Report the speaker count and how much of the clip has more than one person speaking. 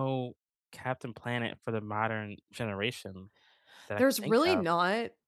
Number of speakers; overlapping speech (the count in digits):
2, about 13%